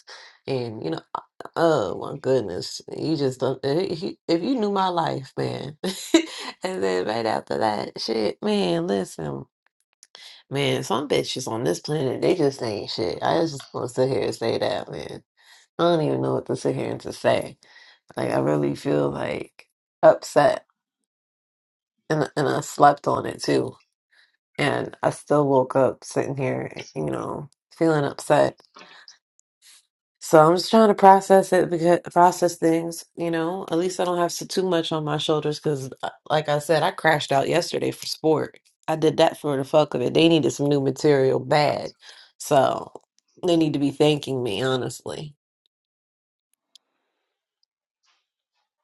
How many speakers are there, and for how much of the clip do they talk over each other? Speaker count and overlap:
1, no overlap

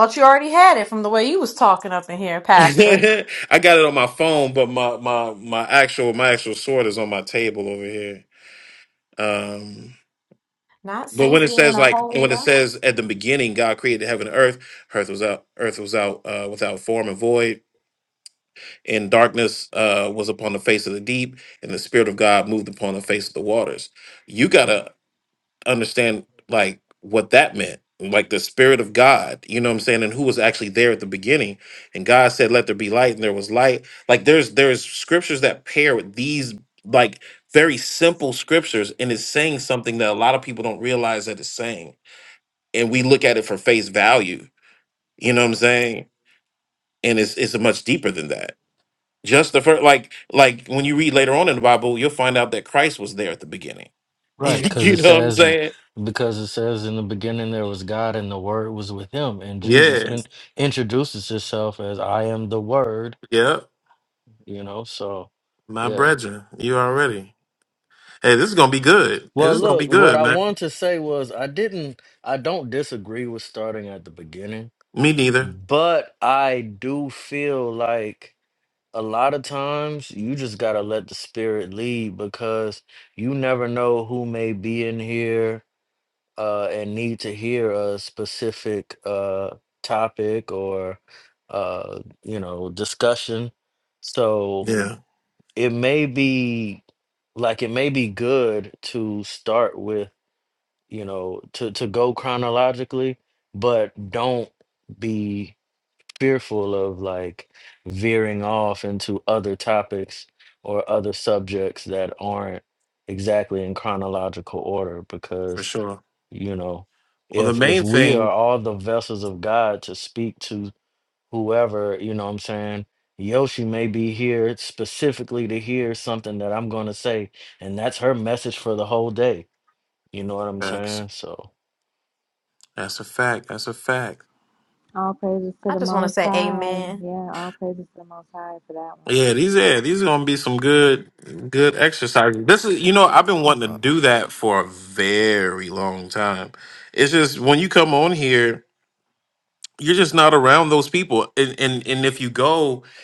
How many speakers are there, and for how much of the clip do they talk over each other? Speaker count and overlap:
4, about 5%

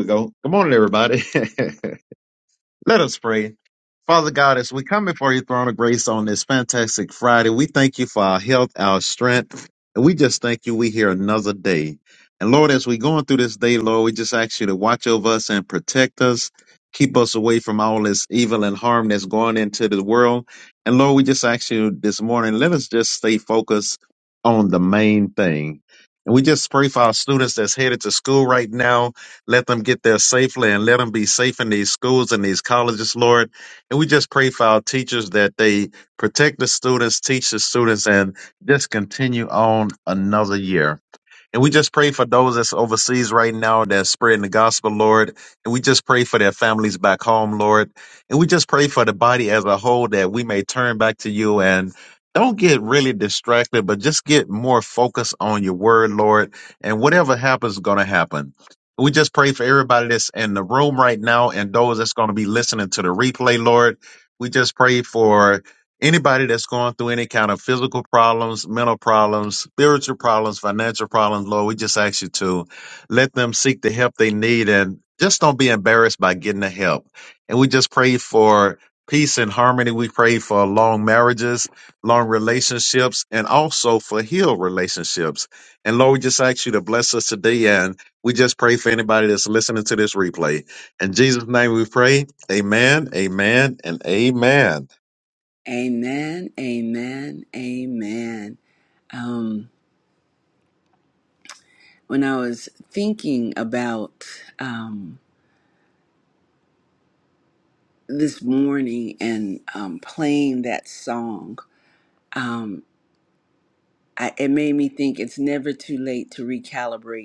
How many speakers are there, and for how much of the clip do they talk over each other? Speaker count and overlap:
2, no overlap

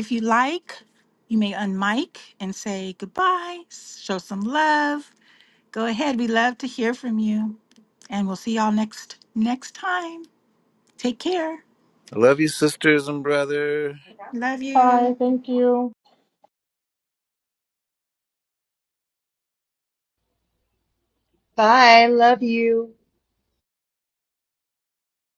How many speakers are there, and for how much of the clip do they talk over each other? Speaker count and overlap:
4, about 2%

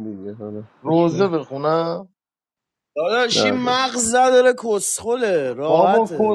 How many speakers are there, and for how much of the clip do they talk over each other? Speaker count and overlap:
3, about 25%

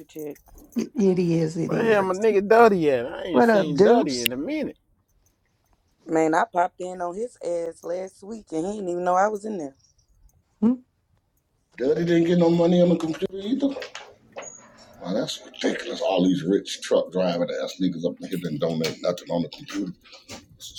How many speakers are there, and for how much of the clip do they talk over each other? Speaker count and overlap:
4, about 7%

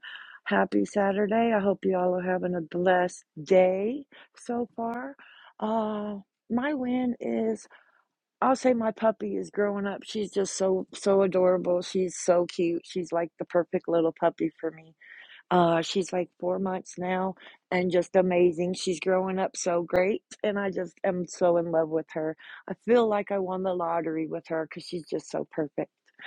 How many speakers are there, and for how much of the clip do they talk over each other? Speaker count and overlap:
1, no overlap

